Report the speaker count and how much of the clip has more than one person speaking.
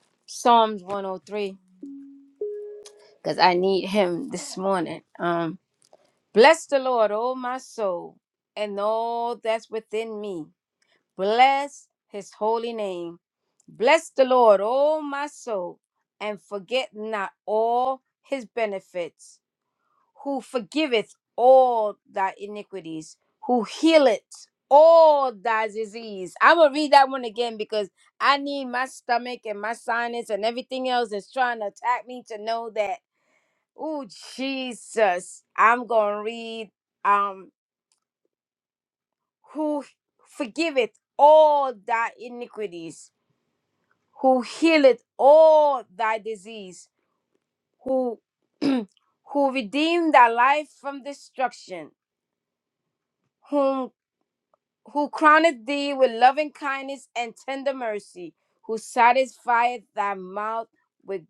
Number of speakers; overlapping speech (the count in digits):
1, no overlap